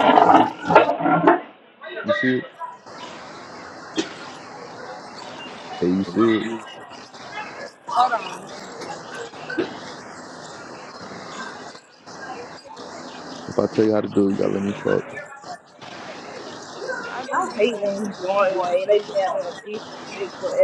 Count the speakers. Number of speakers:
three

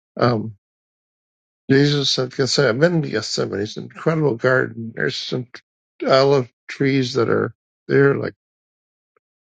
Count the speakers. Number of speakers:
one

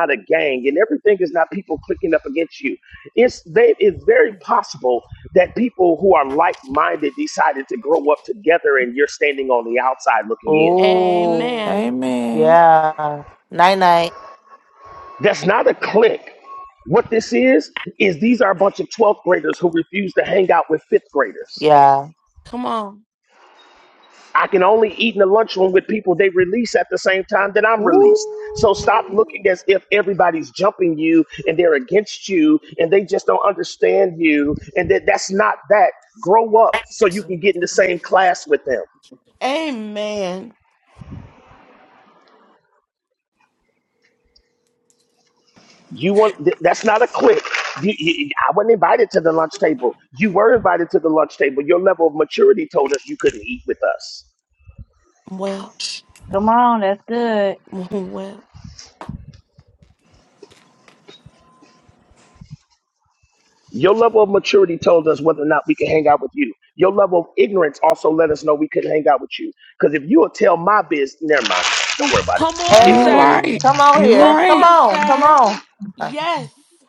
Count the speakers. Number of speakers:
five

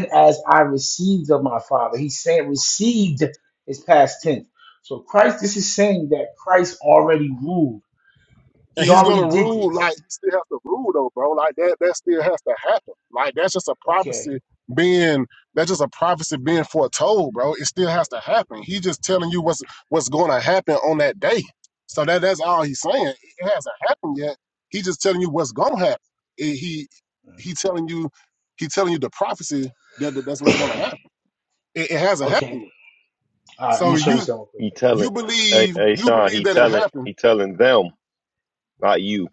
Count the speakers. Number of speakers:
three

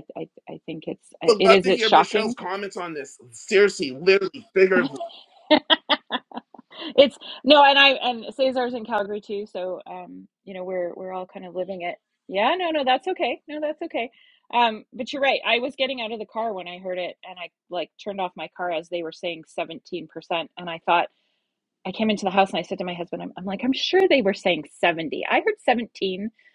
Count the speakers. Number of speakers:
two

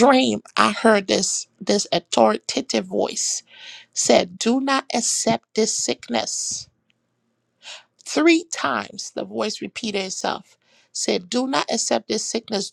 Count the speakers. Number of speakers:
one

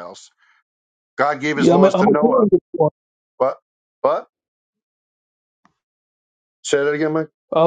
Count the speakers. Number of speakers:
two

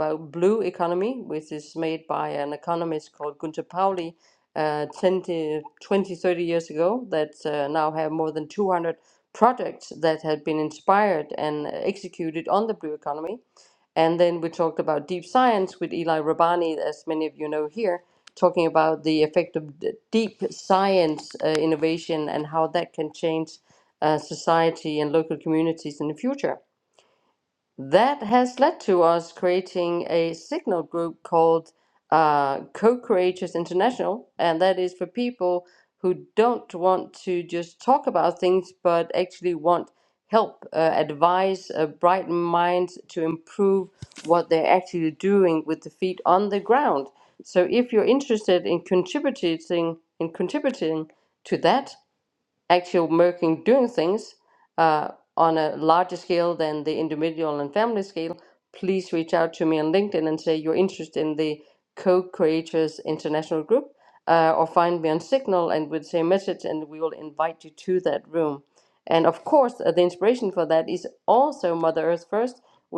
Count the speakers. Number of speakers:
one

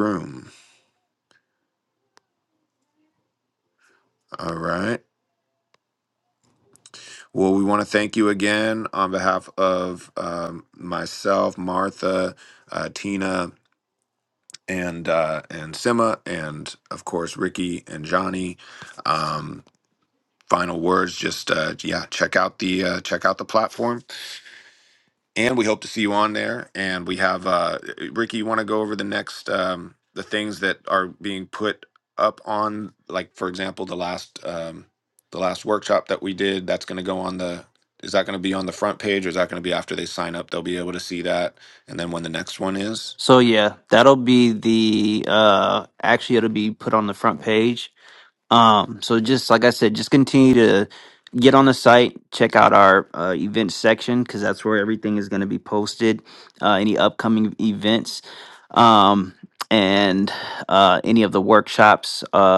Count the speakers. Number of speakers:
two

